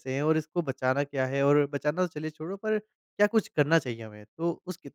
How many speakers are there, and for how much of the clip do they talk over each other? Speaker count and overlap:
1, no overlap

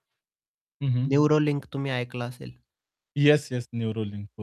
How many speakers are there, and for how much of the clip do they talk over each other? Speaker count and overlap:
2, about 1%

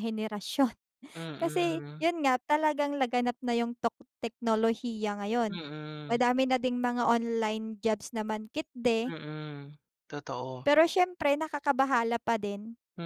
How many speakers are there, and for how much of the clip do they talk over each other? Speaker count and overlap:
2, about 6%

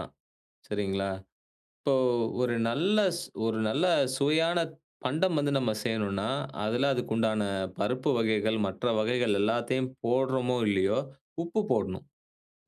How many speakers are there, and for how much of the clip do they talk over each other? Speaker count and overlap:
1, no overlap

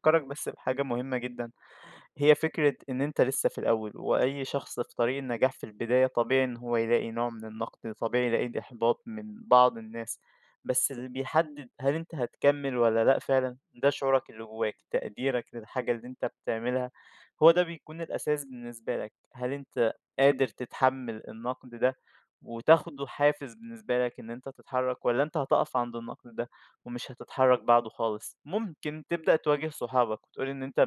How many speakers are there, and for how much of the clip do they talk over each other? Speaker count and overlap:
1, no overlap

